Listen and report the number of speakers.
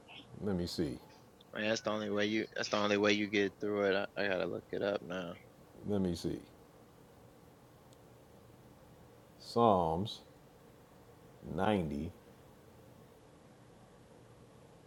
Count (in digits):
2